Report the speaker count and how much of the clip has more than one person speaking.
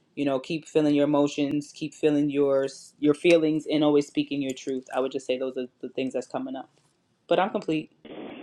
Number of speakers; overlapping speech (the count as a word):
one, no overlap